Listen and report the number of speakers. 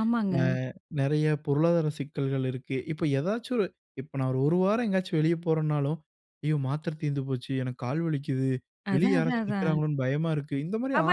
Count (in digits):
2